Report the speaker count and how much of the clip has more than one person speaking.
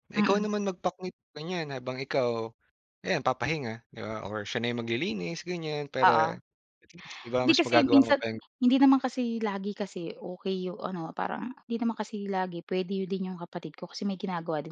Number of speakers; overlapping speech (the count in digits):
2, about 10%